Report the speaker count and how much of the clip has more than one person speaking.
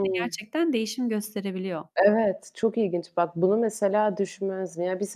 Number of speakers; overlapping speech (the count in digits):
2, about 6%